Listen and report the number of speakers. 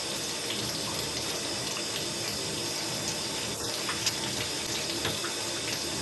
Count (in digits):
0